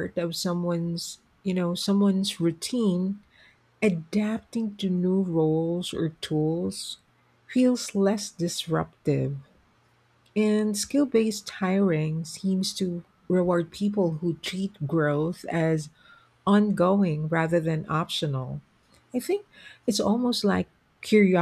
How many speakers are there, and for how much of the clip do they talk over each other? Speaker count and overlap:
one, no overlap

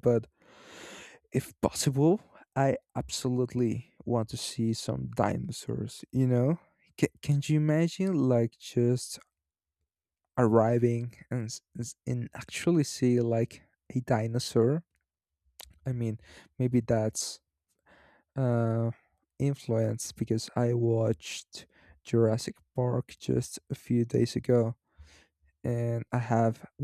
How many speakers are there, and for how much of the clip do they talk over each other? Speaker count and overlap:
one, no overlap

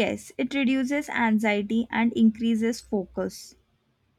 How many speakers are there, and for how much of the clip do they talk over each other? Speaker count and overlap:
one, no overlap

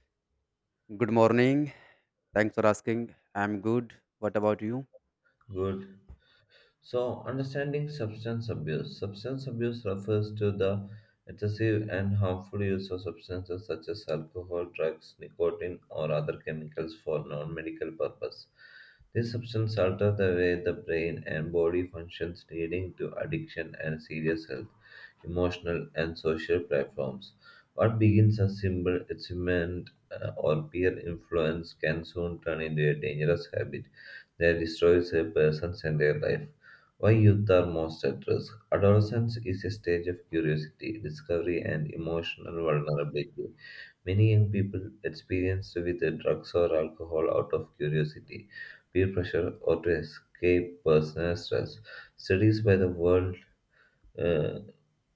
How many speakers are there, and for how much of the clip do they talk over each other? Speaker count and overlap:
two, no overlap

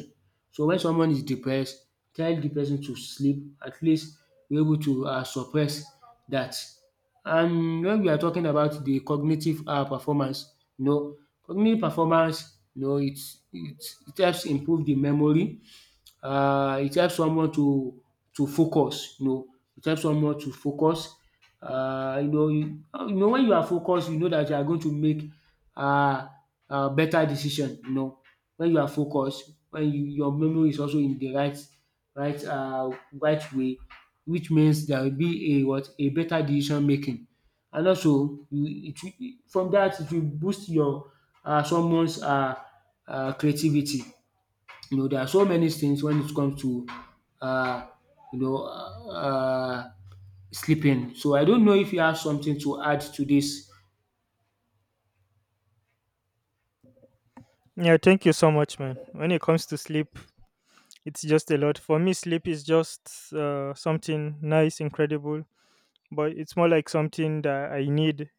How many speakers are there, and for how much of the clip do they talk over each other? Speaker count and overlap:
two, no overlap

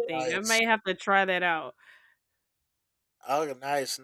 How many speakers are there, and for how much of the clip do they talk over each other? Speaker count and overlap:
two, about 15%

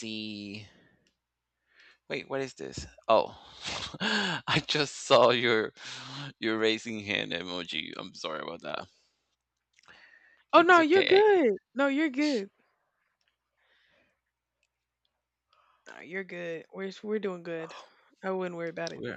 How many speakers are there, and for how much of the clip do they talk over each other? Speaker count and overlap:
two, about 4%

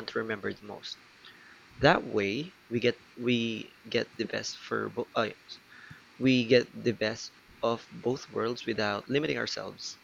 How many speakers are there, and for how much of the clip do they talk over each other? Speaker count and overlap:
one, no overlap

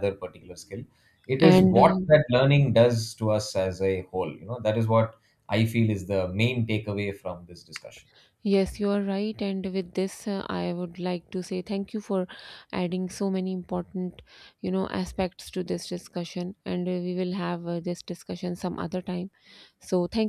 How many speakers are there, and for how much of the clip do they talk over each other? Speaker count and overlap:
two, about 3%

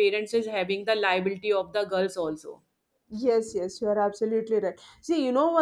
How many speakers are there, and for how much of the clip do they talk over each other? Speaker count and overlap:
two, no overlap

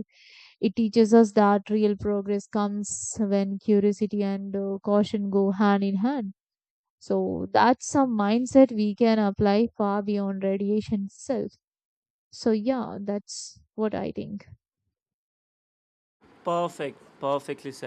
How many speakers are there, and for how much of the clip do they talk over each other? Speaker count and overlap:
two, no overlap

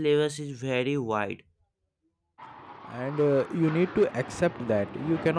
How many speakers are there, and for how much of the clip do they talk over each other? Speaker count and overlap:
two, no overlap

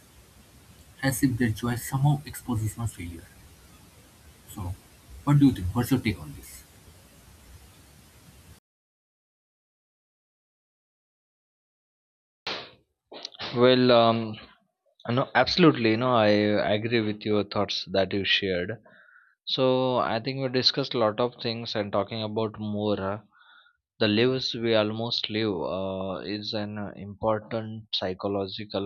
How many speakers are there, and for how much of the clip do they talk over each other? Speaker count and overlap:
two, no overlap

